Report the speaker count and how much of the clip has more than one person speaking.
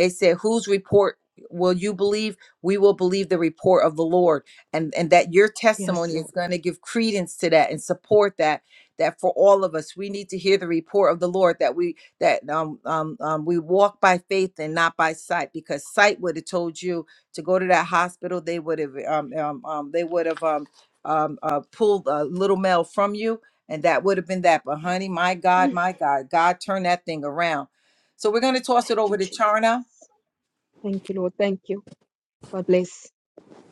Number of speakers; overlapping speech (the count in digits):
2, about 3%